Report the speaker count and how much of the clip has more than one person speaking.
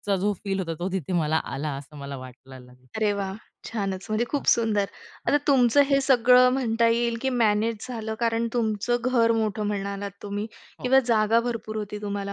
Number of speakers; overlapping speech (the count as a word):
two, about 2%